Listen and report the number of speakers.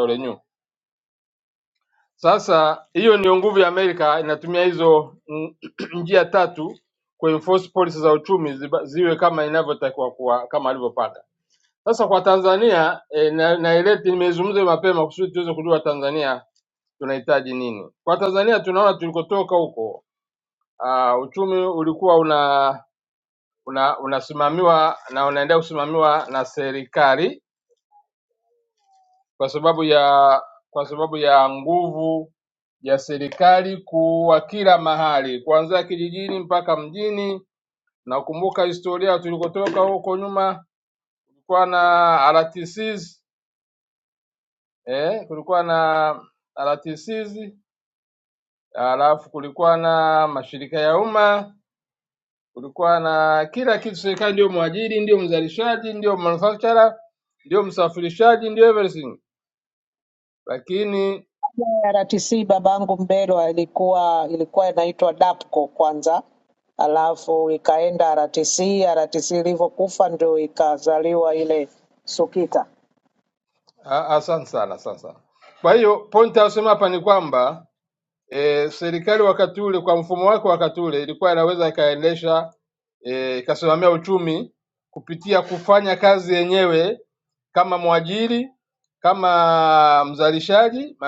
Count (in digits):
2